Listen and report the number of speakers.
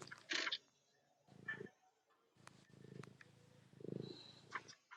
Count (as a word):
zero